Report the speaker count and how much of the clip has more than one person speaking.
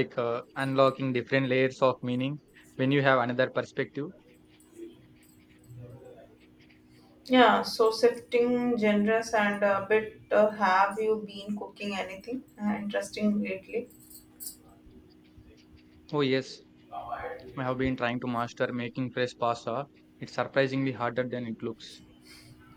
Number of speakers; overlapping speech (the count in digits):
2, no overlap